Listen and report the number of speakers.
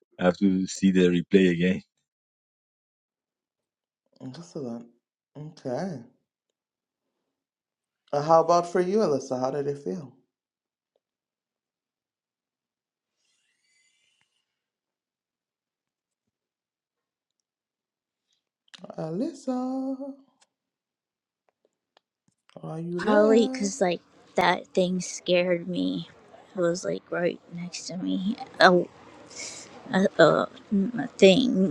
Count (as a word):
three